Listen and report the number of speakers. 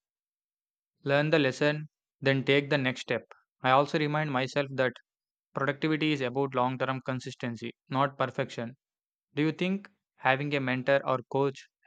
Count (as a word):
one